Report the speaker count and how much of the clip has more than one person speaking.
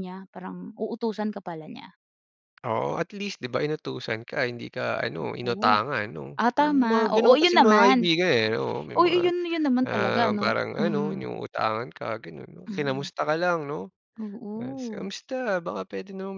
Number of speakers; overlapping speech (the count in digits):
2, about 27%